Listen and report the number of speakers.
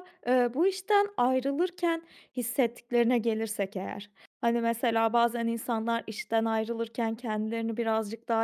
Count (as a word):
one